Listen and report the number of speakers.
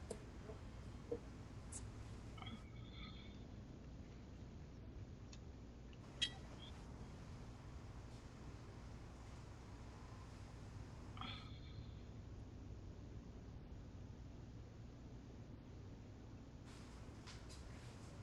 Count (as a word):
zero